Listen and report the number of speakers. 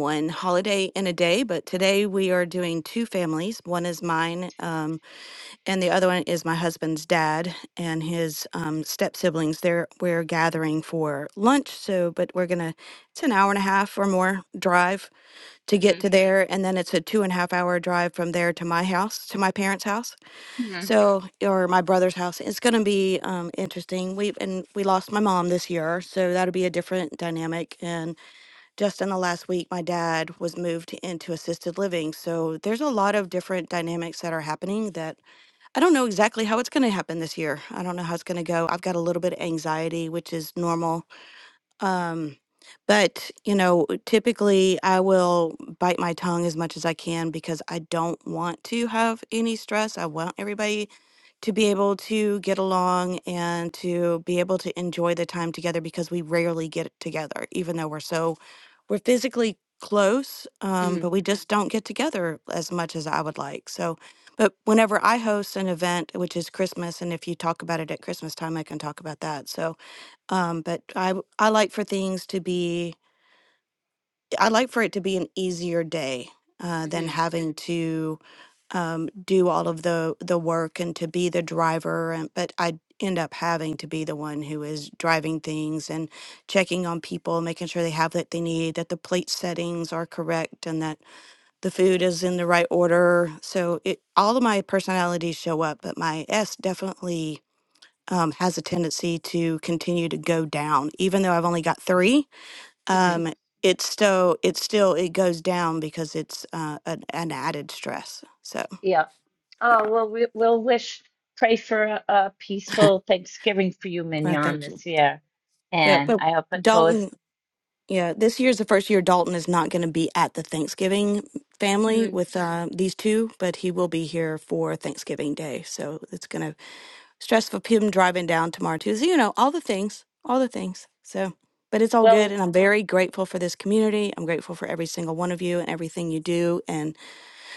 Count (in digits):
2